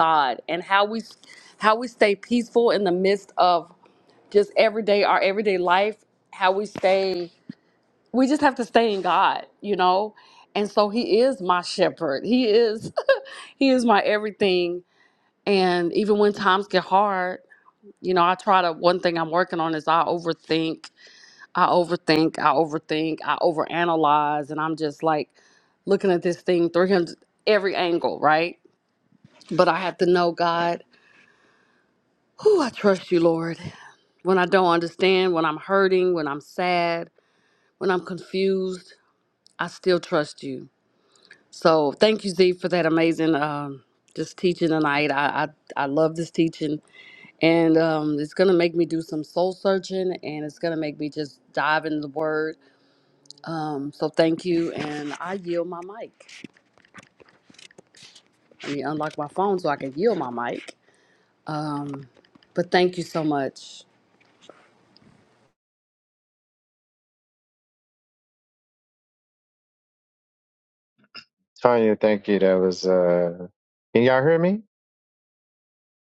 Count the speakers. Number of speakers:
2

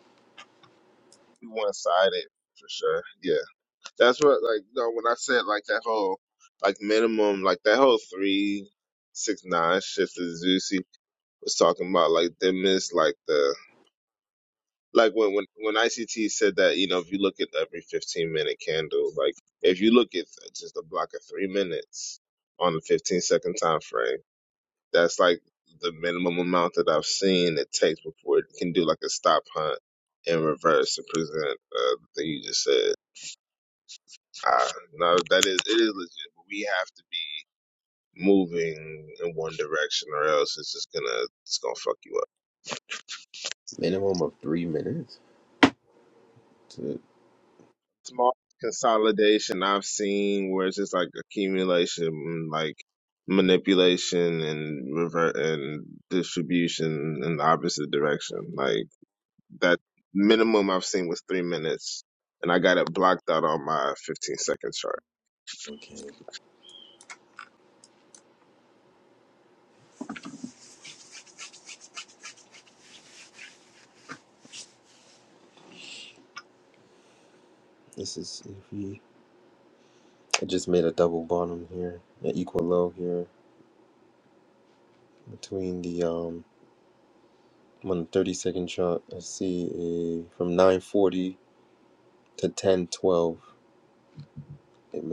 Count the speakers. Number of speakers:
2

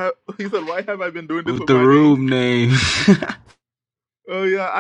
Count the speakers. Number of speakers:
2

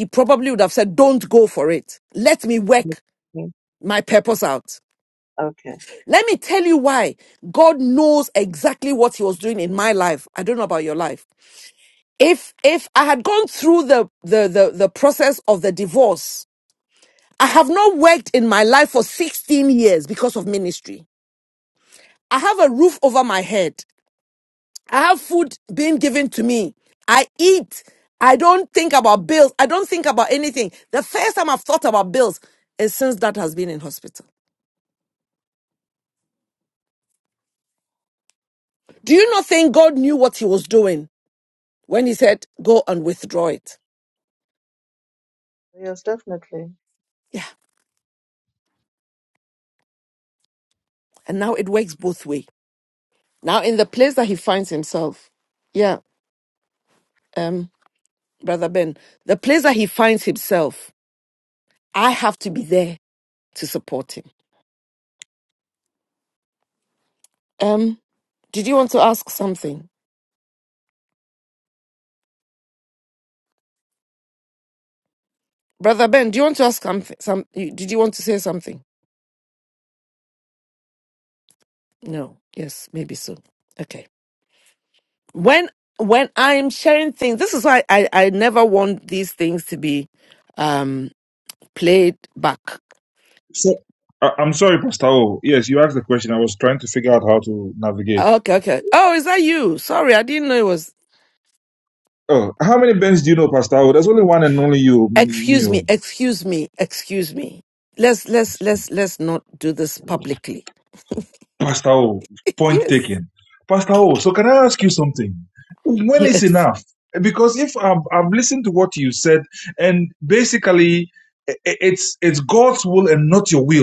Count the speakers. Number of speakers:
3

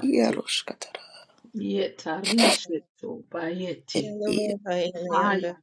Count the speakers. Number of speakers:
3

